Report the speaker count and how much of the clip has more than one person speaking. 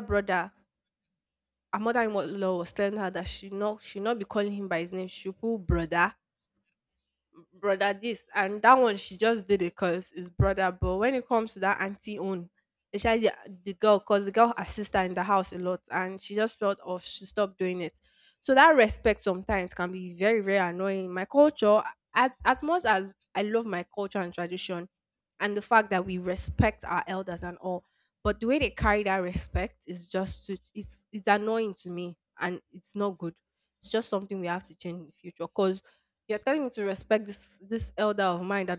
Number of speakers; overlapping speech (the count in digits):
1, no overlap